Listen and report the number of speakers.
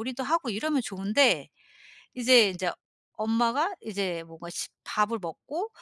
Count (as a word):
one